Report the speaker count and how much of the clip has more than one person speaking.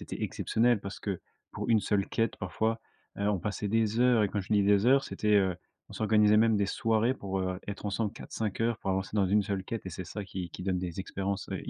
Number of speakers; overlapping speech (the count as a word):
one, no overlap